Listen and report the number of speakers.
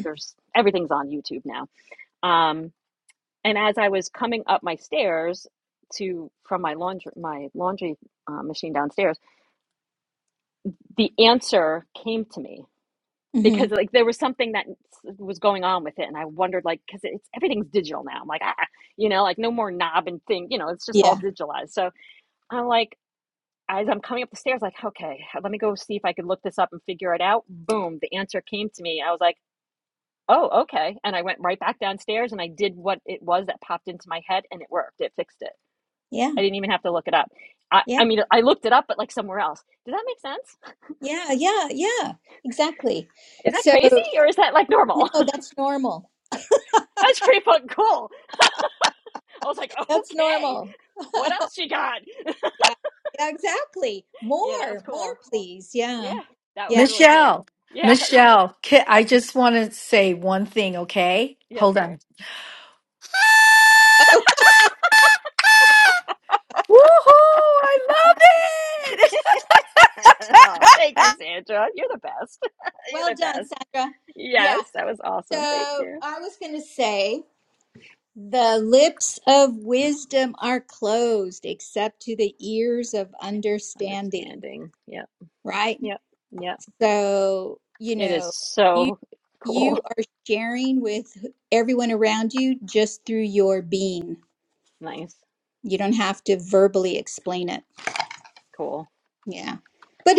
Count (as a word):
three